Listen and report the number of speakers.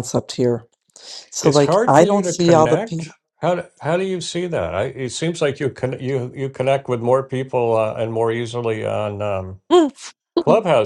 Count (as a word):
two